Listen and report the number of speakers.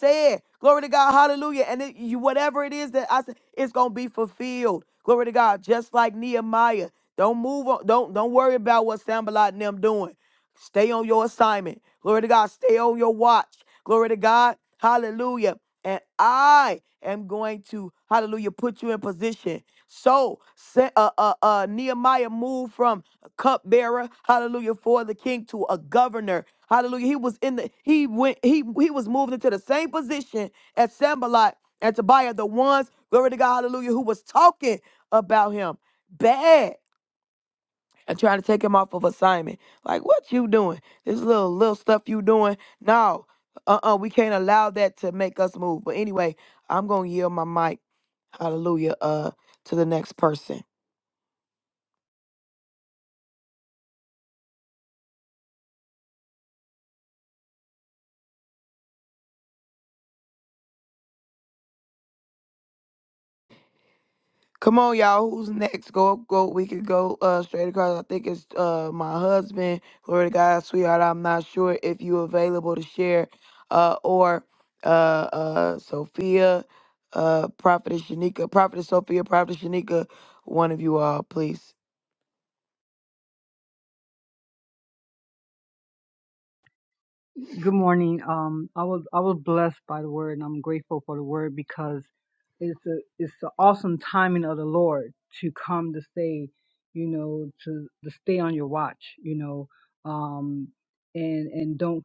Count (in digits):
2